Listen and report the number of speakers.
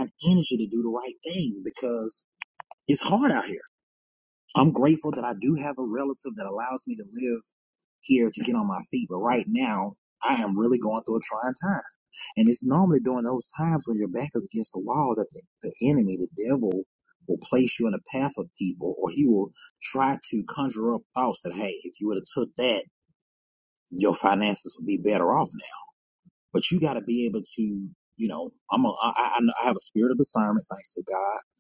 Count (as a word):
one